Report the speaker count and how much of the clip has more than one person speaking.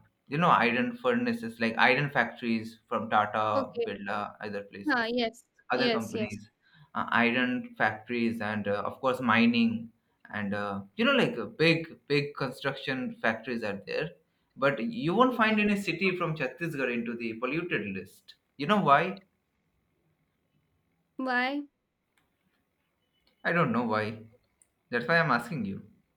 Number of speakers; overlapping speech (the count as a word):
two, about 6%